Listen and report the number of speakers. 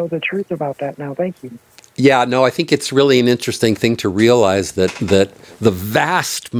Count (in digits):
2